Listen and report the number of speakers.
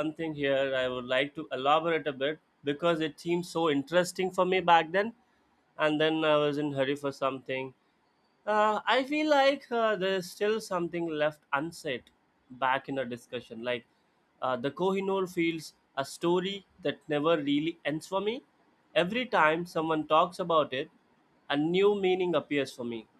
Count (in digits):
1